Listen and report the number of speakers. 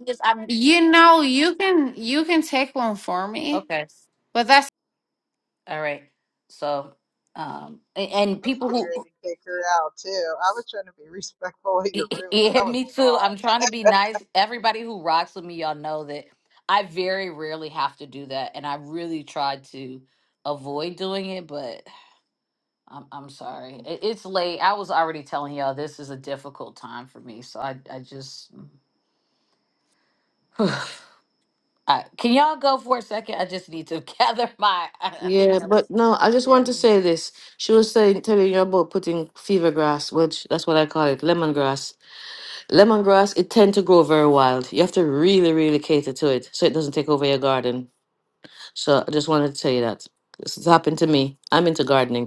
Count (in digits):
4